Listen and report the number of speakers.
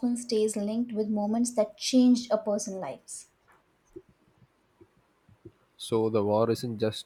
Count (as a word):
two